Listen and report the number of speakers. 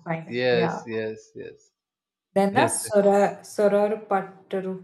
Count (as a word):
two